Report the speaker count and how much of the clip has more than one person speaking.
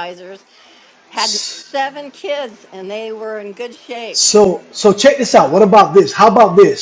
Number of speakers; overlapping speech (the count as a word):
two, about 1%